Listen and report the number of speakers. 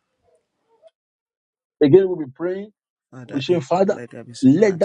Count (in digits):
2